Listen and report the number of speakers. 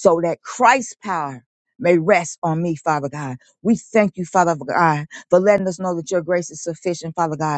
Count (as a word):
one